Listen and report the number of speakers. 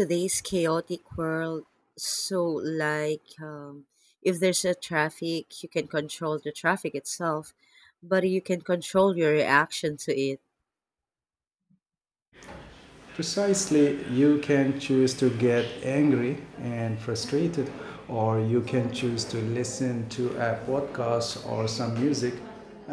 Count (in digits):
2